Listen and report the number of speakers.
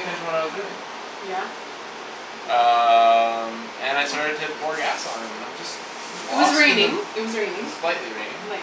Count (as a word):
two